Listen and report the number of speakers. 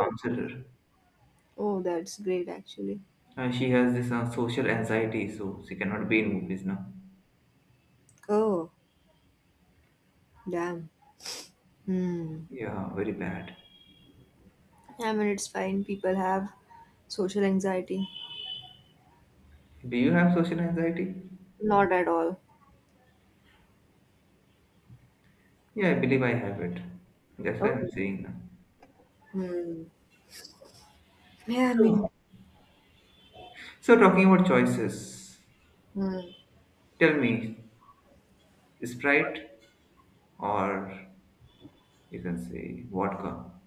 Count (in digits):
2